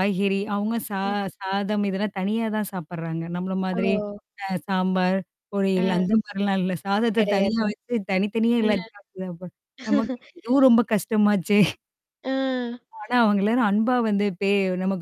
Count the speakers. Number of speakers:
2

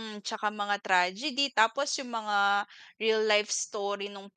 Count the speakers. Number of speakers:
1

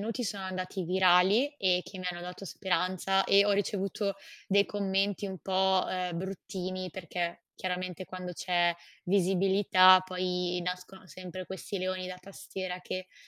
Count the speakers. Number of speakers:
1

